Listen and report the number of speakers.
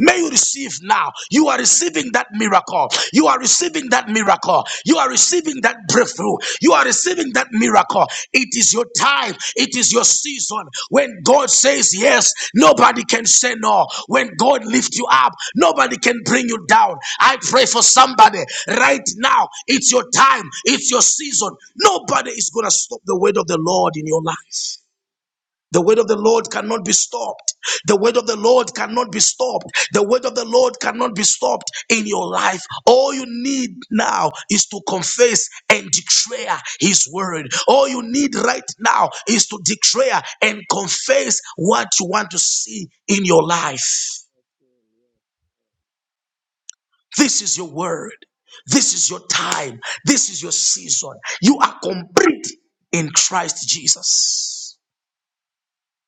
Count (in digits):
1